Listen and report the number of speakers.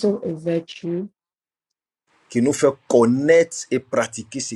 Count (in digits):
2